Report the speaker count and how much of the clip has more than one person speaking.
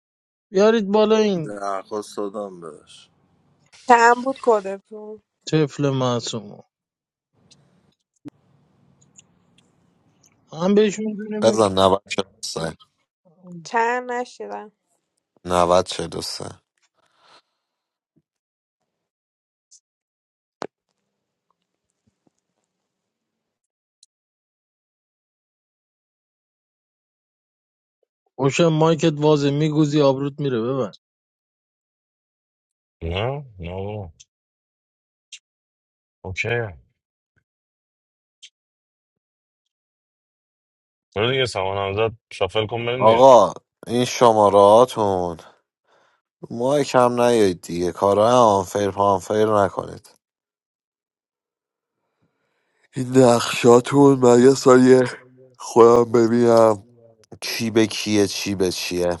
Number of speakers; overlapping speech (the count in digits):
5, about 1%